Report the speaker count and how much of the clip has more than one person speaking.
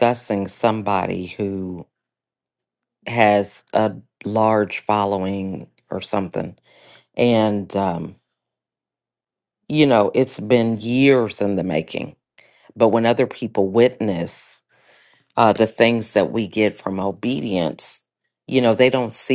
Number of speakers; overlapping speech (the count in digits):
1, no overlap